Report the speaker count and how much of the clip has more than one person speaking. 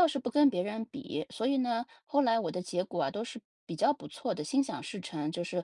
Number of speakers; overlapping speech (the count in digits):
1, no overlap